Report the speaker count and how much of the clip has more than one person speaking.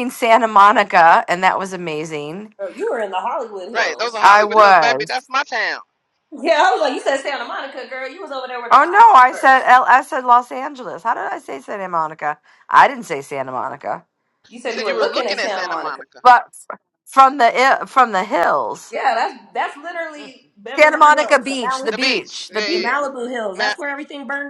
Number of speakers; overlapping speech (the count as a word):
three, about 23%